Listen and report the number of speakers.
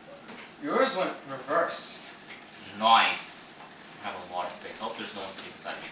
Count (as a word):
two